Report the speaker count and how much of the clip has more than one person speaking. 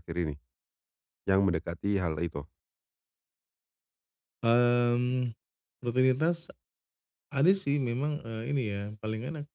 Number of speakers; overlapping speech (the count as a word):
two, no overlap